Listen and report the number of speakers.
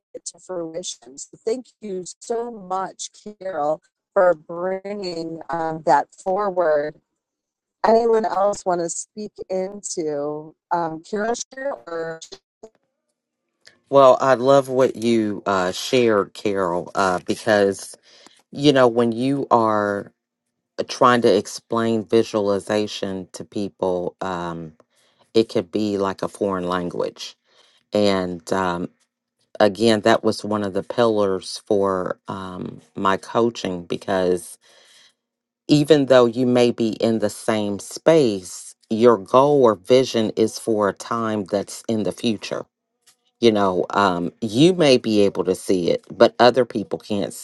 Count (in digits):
2